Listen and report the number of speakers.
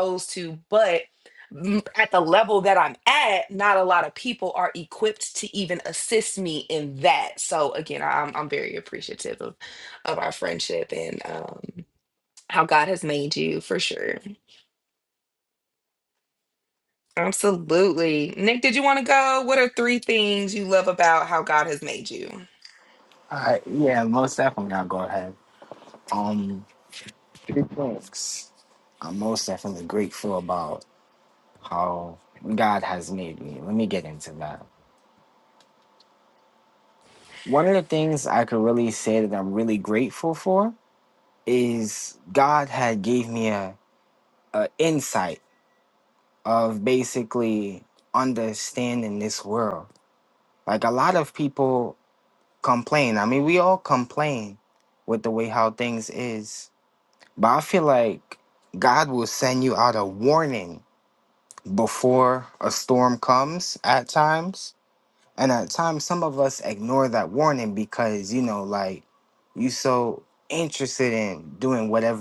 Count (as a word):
two